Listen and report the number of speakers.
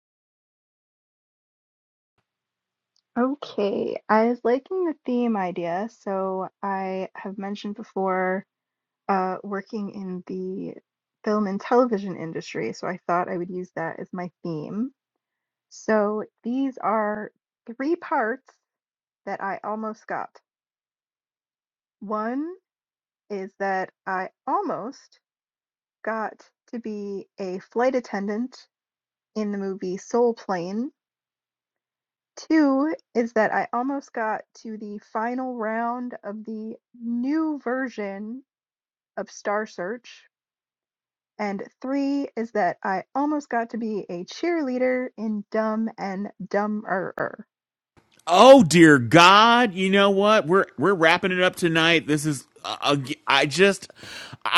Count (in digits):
2